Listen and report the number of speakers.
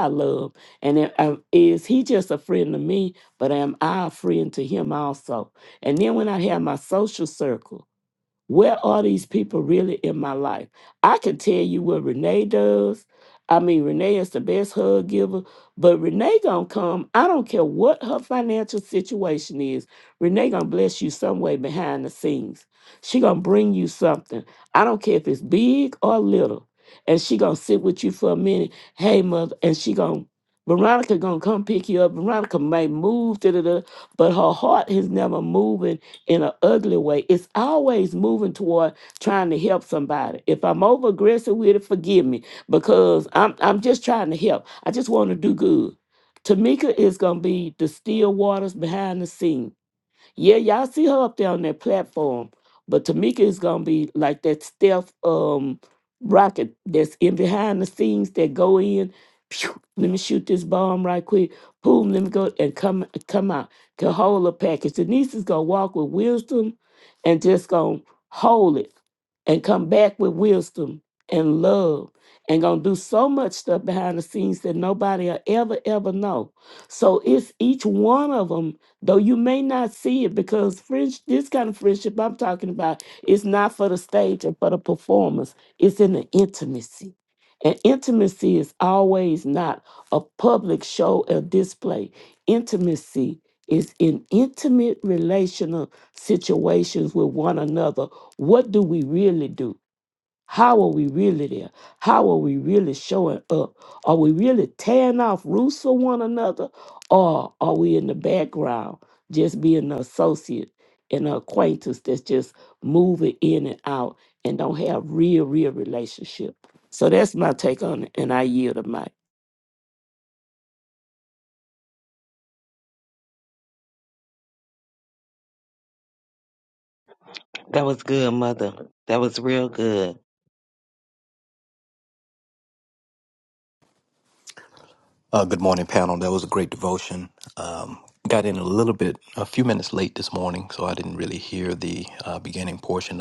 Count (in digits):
3